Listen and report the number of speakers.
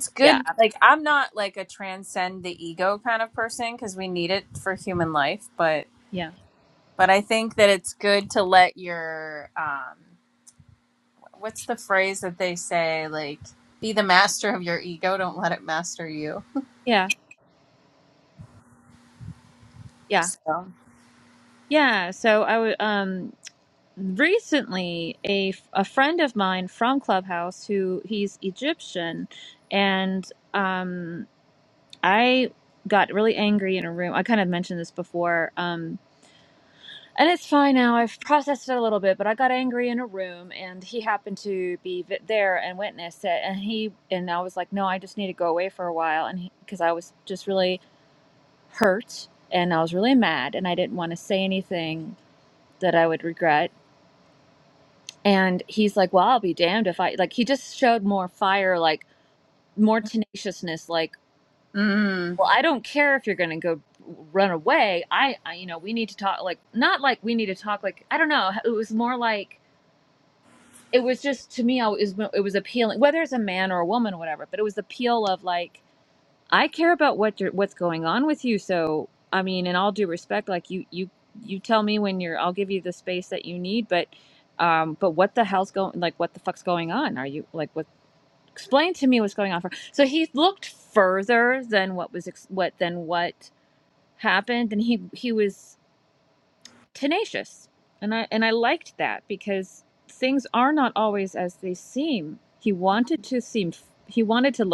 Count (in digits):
2